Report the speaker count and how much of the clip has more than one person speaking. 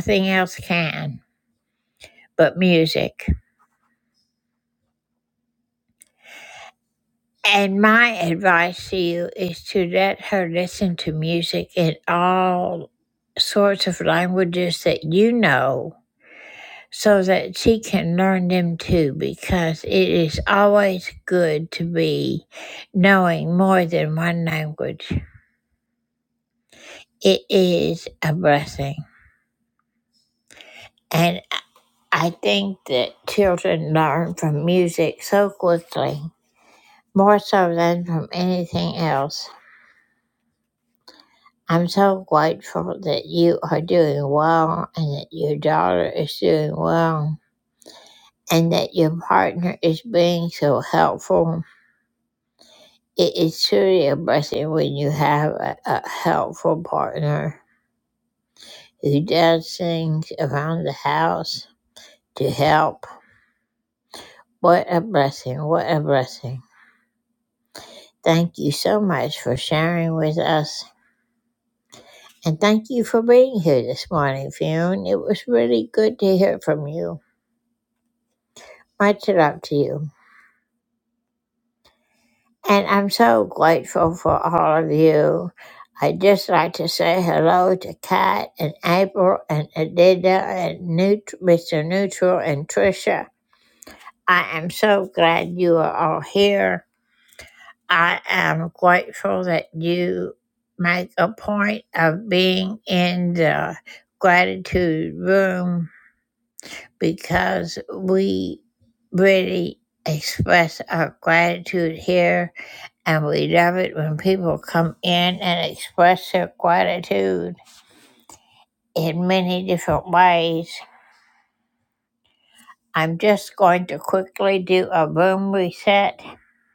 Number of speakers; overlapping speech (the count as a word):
one, no overlap